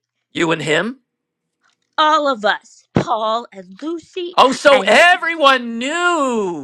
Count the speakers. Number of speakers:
two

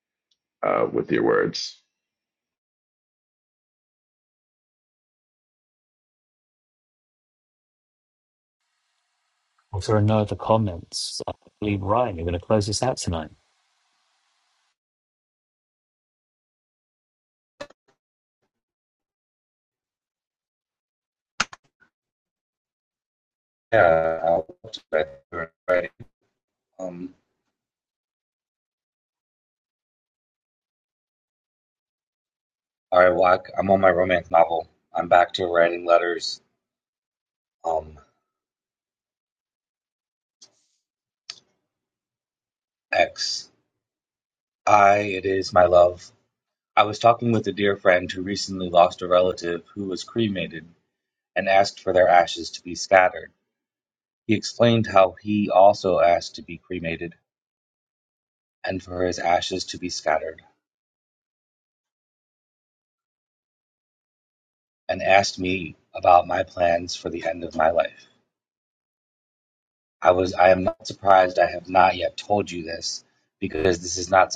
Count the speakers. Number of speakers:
three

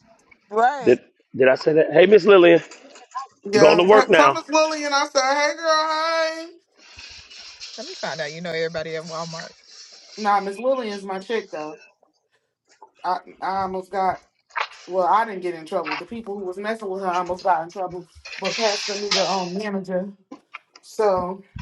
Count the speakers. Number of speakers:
three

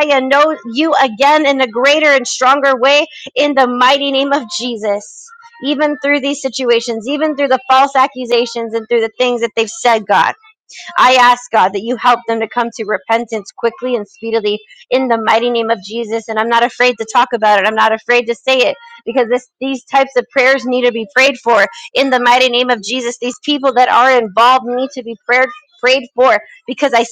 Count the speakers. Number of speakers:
one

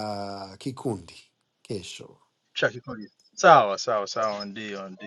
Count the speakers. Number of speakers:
two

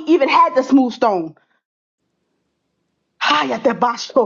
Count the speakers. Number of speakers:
one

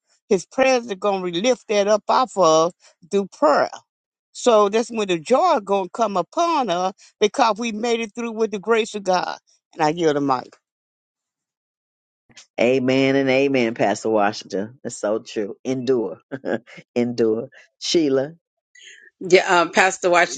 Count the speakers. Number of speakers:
three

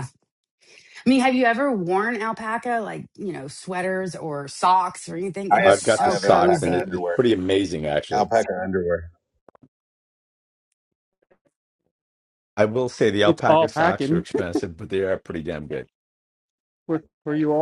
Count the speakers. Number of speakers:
four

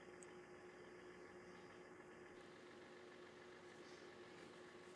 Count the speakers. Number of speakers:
zero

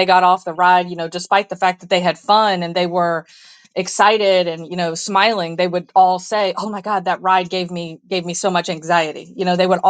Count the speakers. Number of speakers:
one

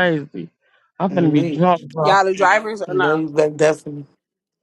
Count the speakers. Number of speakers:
three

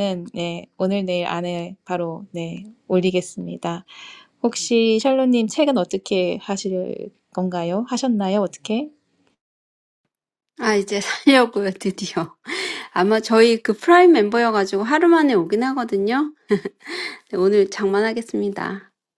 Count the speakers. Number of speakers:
two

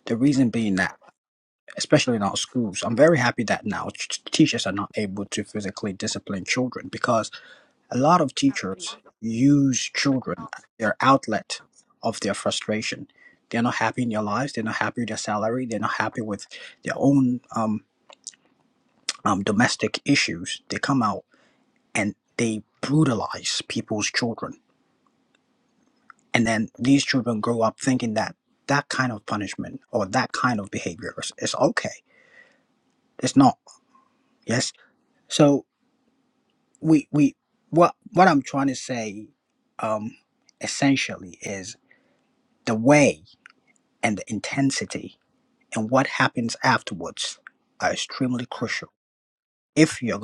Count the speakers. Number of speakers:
one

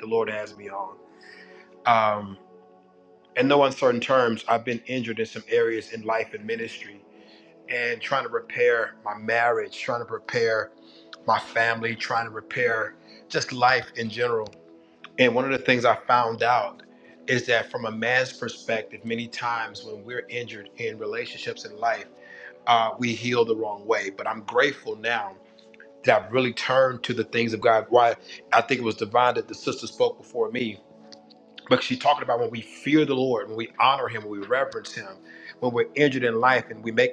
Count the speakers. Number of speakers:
one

